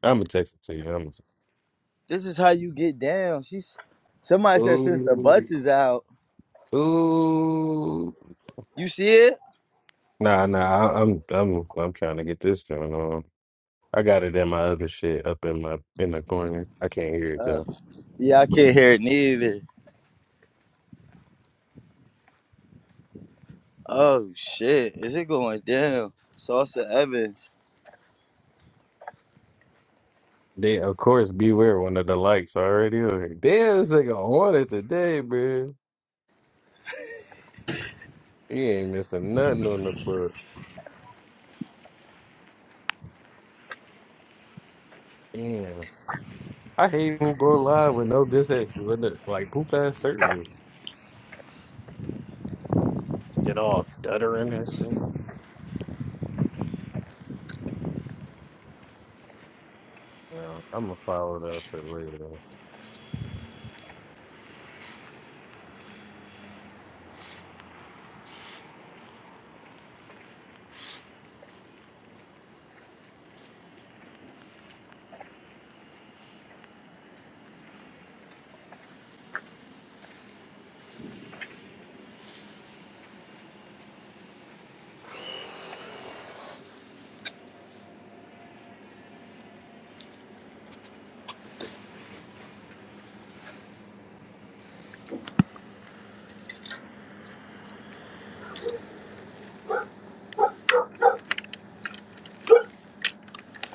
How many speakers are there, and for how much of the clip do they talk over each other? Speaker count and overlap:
2, about 1%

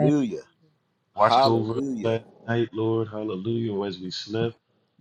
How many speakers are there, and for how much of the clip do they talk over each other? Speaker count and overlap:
2, about 19%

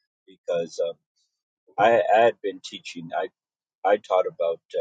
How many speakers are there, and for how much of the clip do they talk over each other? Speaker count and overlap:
1, no overlap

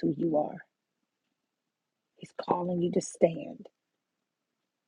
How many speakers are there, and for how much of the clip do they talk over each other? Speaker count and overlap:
1, no overlap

